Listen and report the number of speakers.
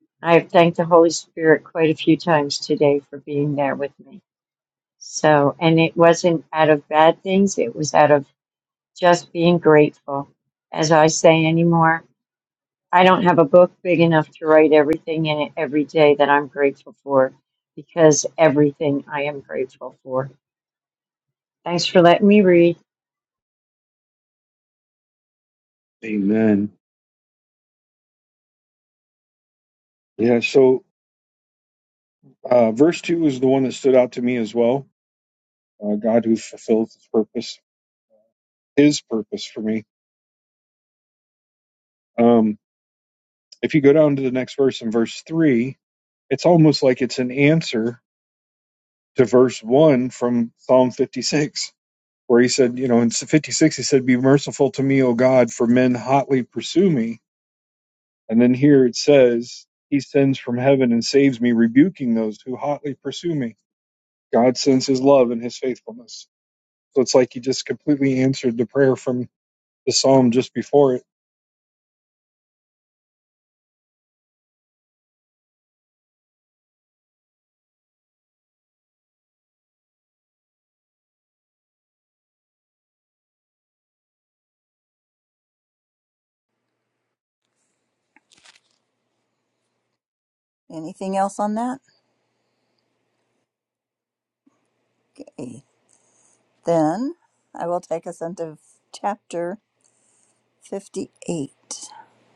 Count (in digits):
3